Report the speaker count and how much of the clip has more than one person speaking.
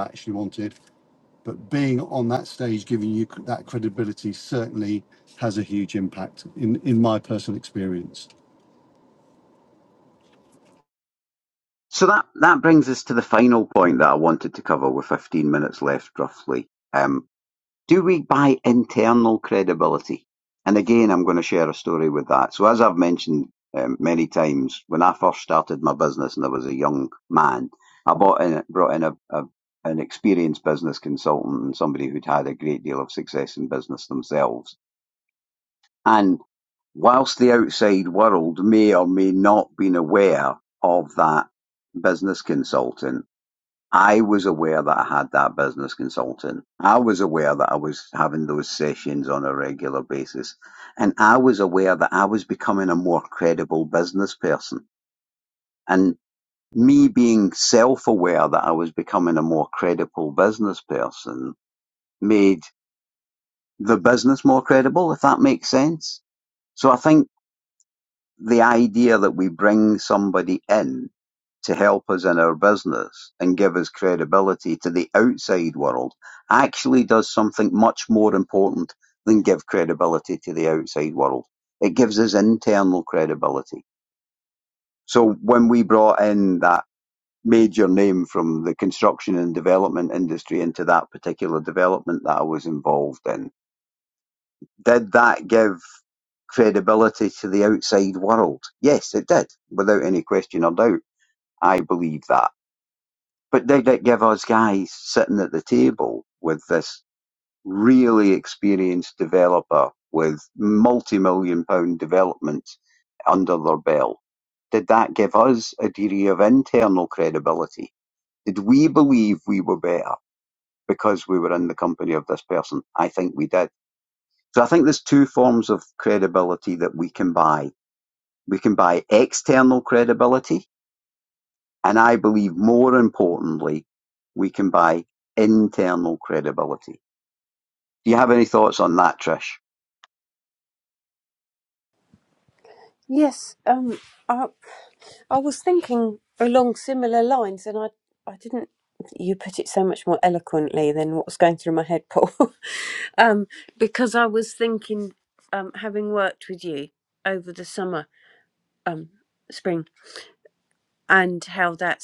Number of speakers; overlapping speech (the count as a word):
three, no overlap